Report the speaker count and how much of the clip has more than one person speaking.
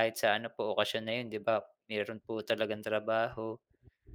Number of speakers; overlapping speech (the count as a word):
one, no overlap